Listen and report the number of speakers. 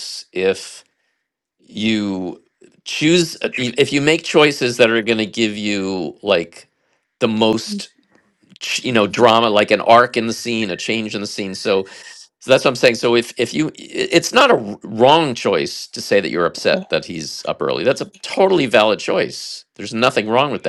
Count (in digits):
1